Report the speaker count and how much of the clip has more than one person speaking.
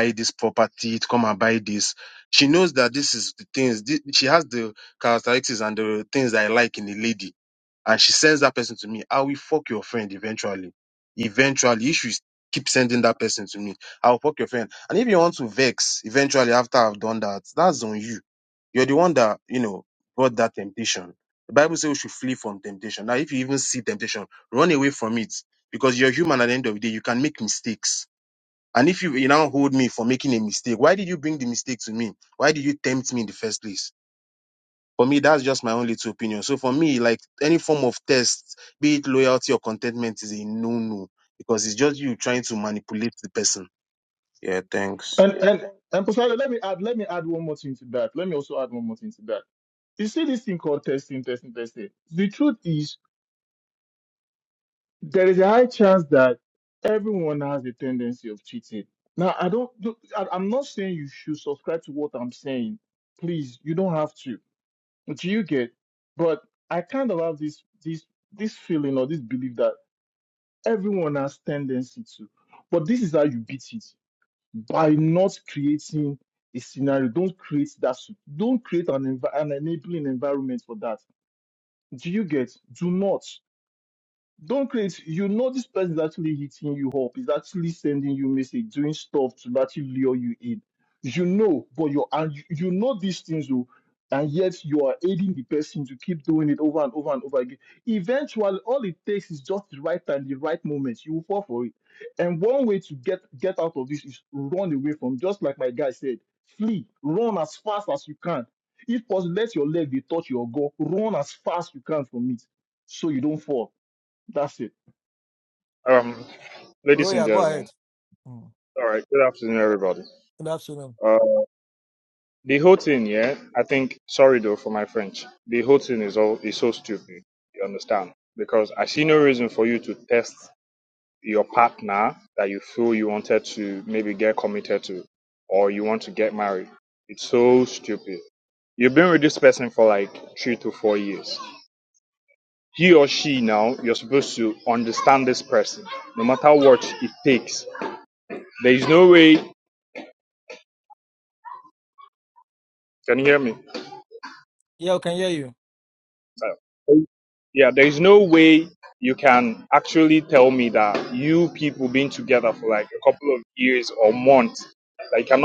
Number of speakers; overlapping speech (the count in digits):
4, under 1%